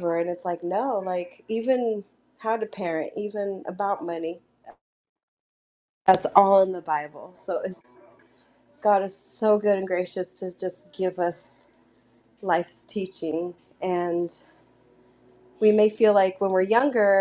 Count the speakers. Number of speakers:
one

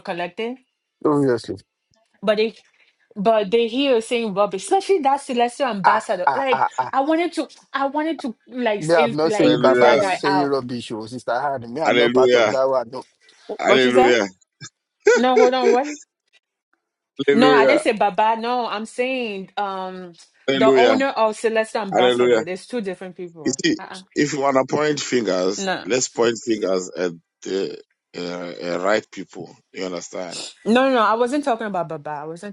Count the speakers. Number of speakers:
three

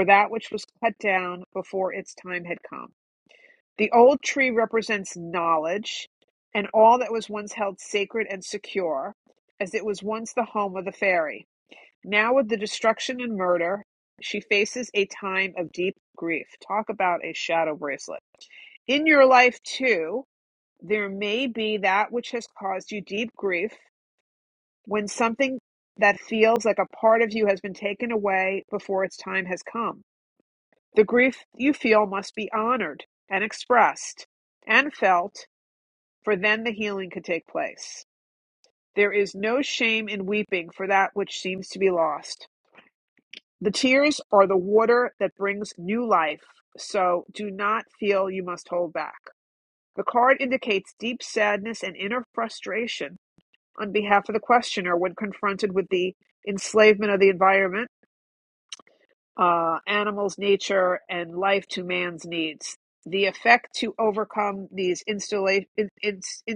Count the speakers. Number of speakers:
one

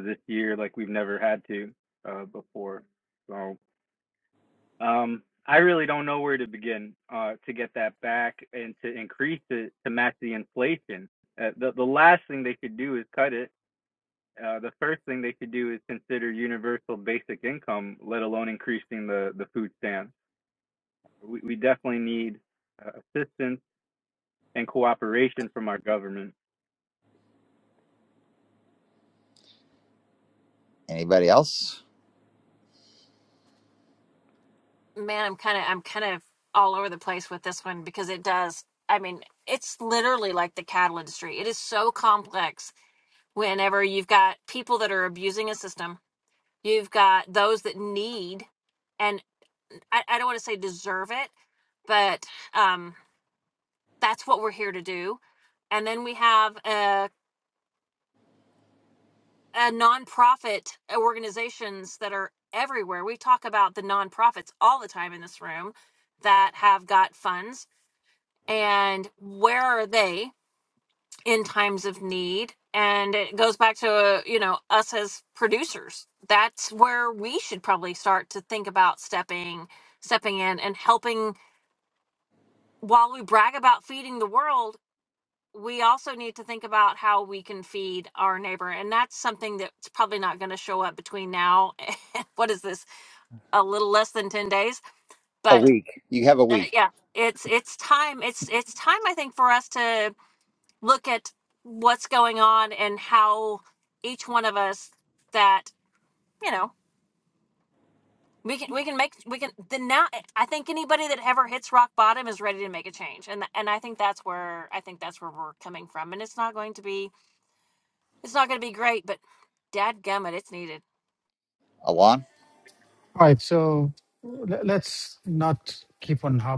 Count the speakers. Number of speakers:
four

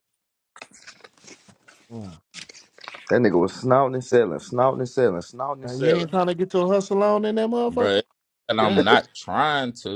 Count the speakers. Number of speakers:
three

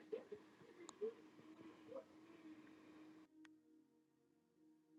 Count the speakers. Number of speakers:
zero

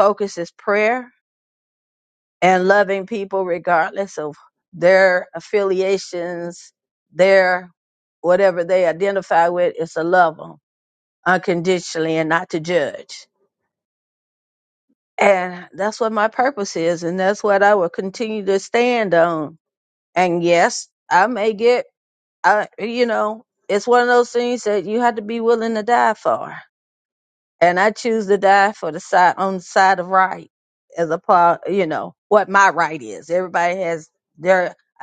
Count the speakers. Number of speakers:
one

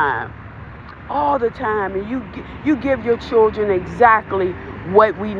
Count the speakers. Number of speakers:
one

